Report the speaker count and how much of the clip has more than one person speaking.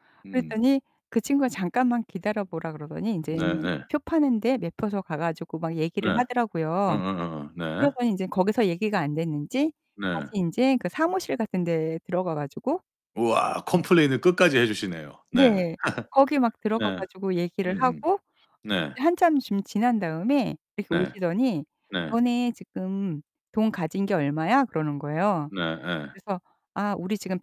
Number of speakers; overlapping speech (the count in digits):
2, about 10%